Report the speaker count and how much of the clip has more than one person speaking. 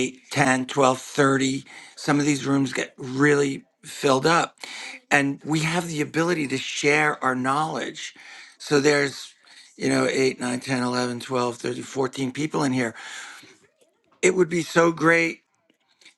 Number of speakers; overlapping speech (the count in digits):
1, no overlap